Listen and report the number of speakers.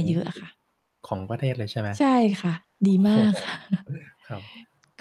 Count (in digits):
2